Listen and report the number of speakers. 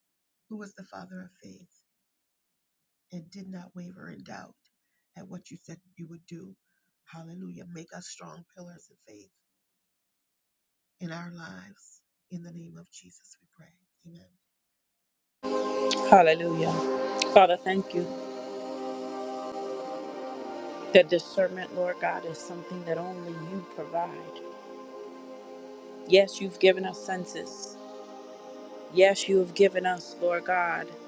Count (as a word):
two